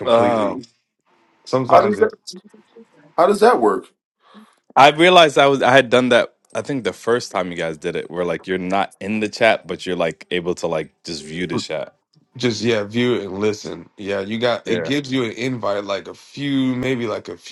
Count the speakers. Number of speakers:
three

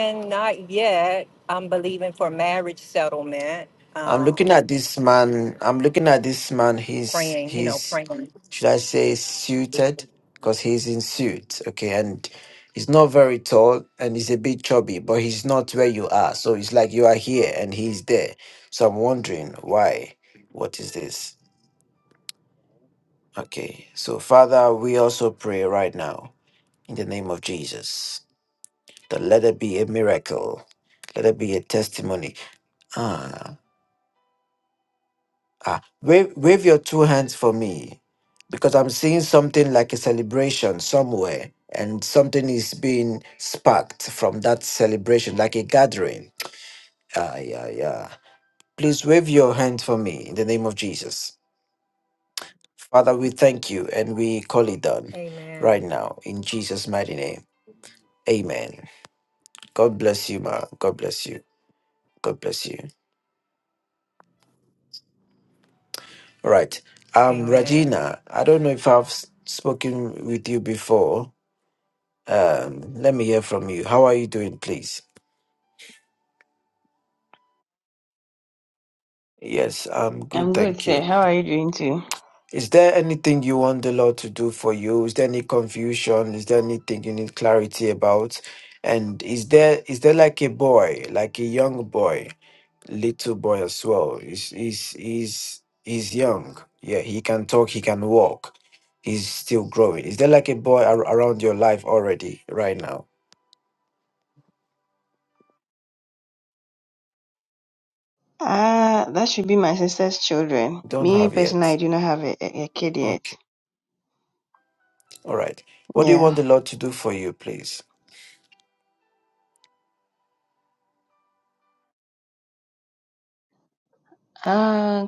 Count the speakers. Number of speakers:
three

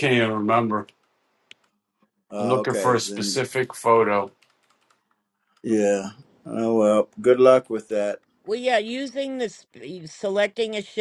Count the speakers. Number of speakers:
three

